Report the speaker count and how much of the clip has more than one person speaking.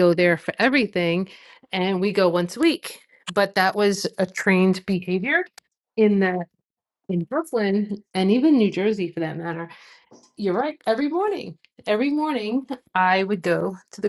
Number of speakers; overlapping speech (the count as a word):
one, no overlap